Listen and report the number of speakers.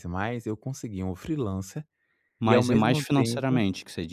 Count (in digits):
2